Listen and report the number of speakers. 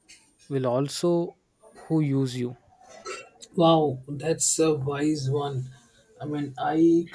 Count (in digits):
2